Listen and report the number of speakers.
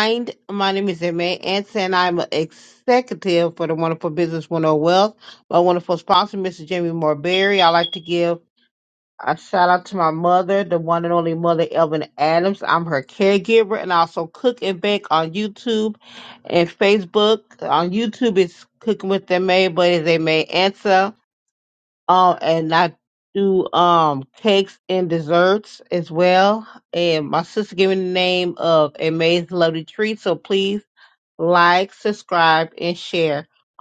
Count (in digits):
1